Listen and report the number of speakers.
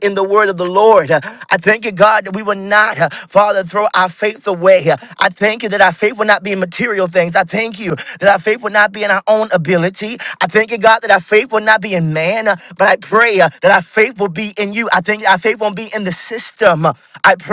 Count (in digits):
1